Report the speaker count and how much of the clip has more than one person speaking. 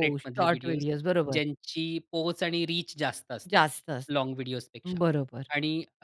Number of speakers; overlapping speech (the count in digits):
2, about 17%